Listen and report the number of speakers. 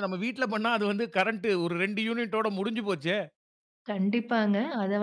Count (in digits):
2